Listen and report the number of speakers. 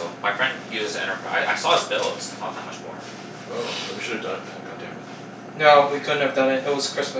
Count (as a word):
three